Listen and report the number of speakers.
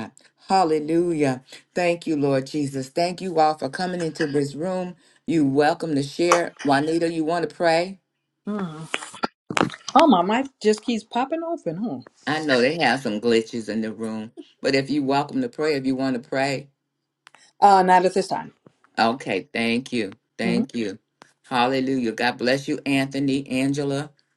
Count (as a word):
two